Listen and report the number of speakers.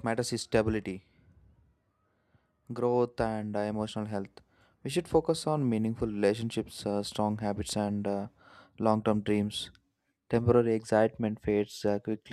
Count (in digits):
1